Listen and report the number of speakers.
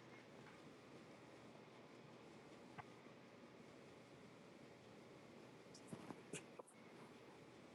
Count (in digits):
0